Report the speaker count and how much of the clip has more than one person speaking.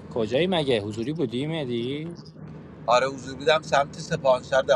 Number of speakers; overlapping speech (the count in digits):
2, no overlap